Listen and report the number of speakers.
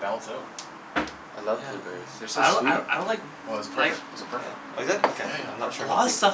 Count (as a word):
four